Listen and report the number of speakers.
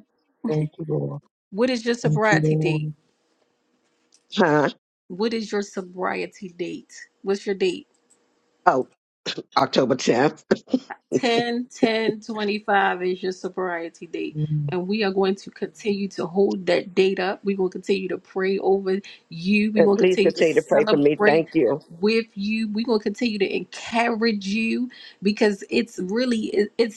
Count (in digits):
3